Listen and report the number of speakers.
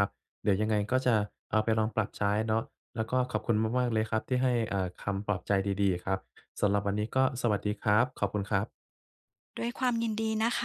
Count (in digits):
2